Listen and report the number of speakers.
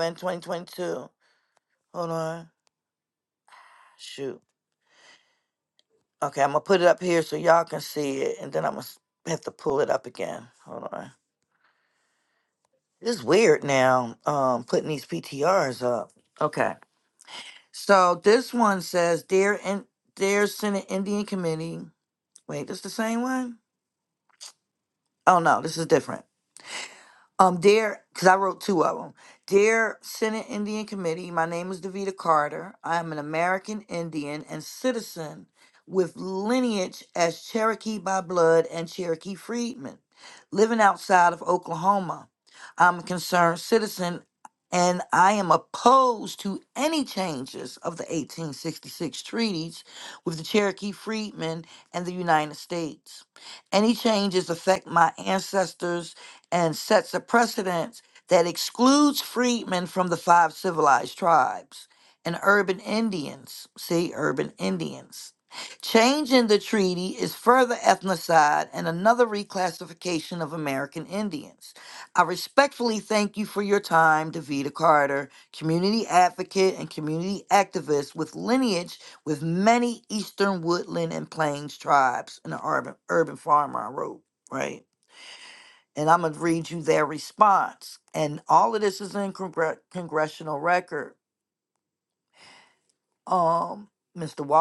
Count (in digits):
1